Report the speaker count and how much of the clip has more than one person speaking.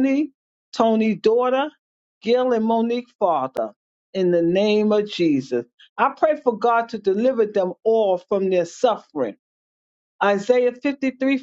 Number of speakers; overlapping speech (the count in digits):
1, no overlap